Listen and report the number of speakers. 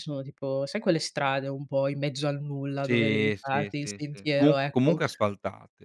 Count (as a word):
two